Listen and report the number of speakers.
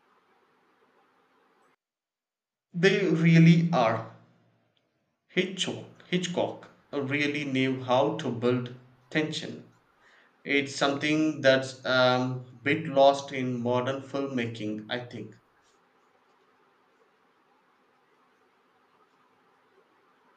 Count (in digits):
1